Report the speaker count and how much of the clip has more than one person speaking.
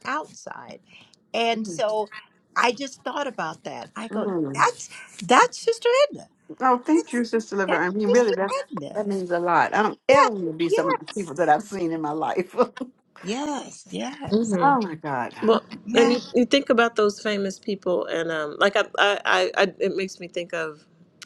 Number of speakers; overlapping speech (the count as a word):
three, about 12%